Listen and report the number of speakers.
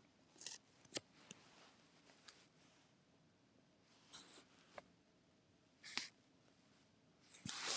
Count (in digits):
0